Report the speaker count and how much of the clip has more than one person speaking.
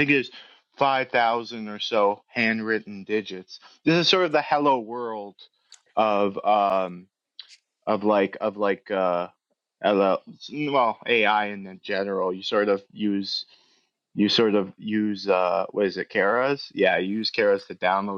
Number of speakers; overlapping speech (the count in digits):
1, no overlap